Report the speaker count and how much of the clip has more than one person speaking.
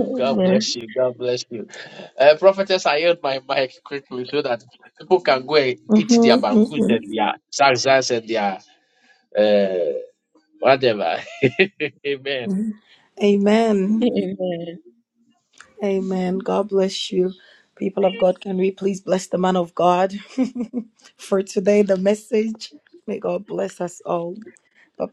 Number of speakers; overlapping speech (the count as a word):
three, about 7%